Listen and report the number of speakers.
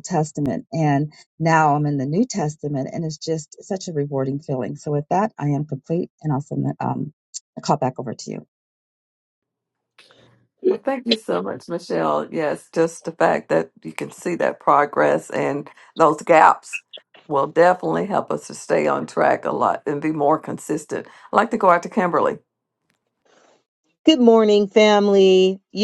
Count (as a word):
three